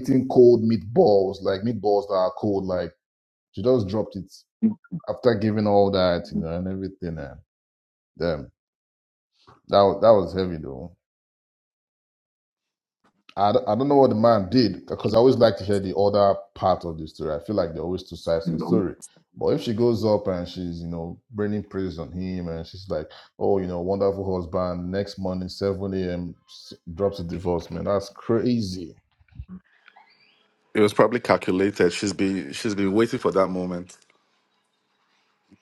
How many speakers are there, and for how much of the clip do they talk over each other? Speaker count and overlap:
two, no overlap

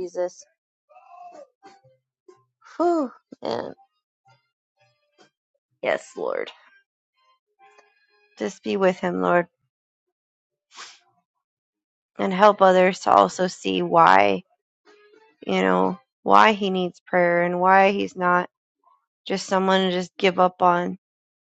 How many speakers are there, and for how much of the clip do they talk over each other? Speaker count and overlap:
one, no overlap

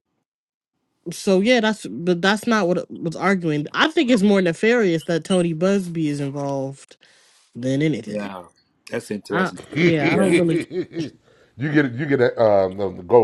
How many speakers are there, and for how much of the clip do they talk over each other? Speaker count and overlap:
three, about 10%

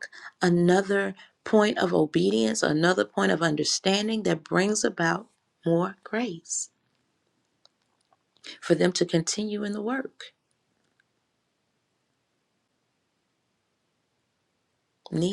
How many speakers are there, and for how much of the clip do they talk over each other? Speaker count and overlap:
one, no overlap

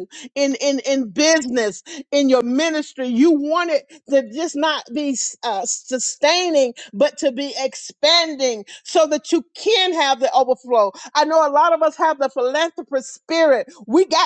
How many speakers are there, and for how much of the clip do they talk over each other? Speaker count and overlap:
one, no overlap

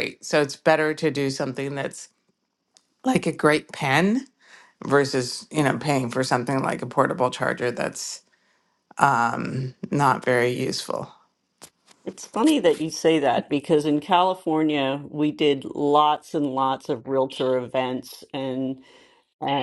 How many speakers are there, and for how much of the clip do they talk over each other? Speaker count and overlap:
two, no overlap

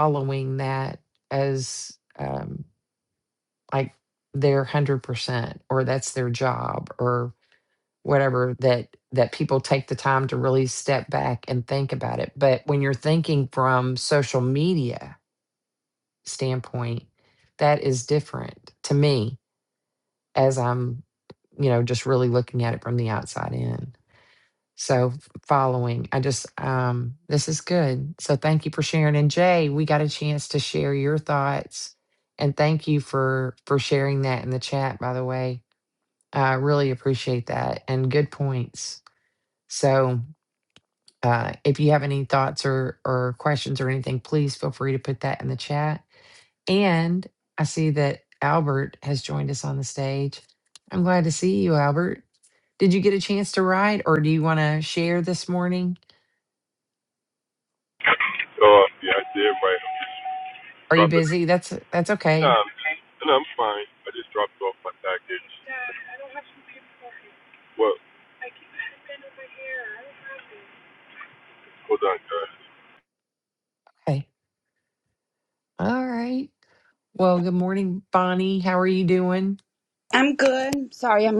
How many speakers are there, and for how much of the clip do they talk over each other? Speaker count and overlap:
three, about 1%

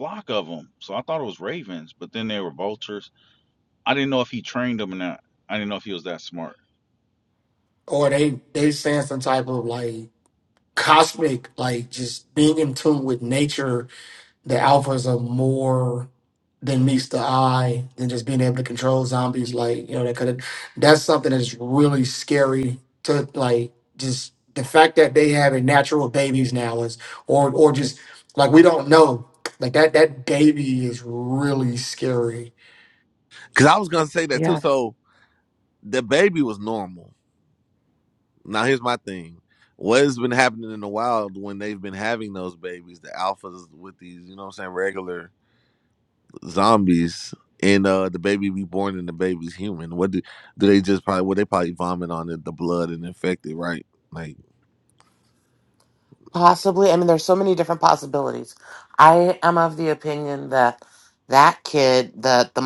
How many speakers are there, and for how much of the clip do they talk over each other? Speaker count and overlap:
four, under 1%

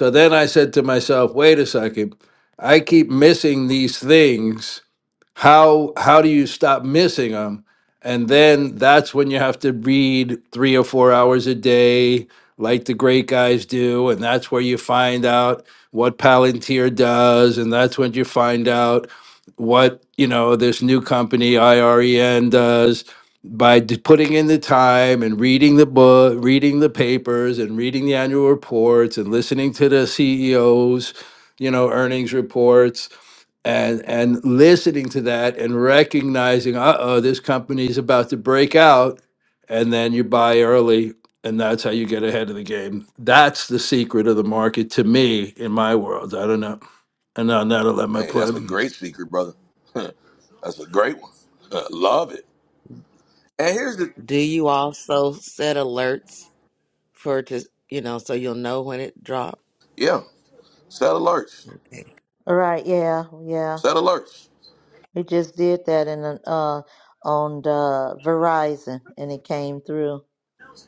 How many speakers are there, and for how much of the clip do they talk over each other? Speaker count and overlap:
four, about 1%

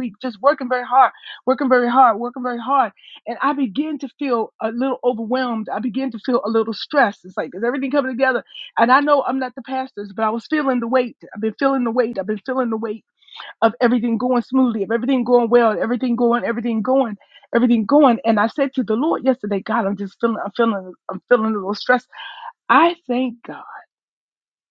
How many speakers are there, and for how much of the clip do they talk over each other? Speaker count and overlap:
one, no overlap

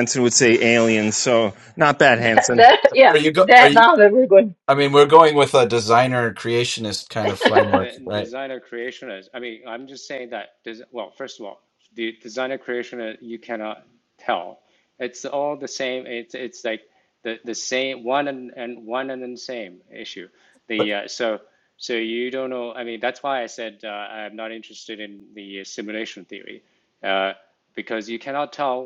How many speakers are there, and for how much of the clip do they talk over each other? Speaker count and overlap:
four, about 5%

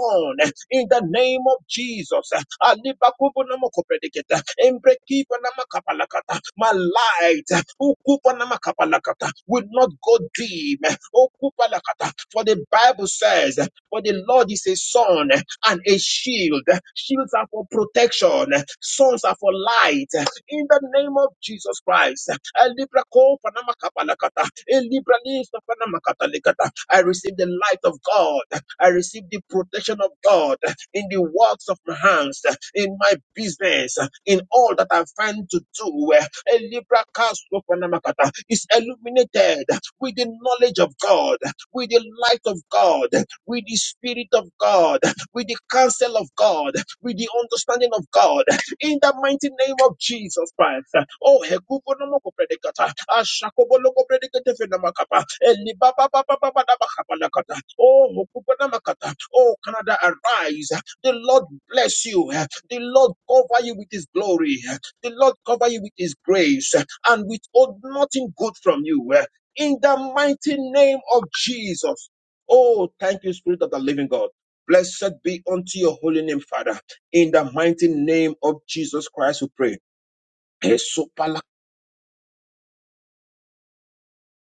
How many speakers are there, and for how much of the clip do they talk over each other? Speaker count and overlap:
one, no overlap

